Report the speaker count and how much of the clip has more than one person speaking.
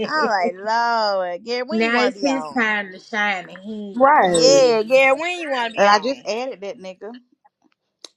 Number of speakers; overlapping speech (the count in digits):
3, about 31%